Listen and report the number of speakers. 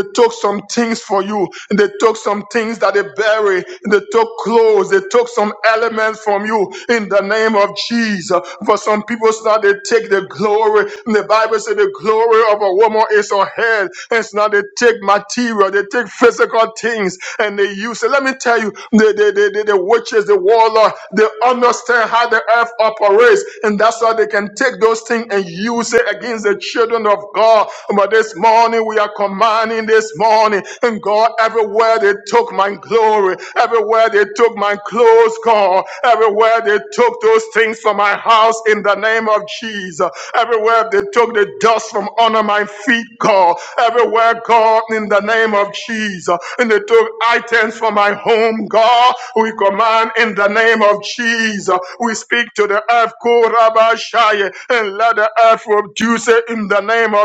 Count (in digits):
1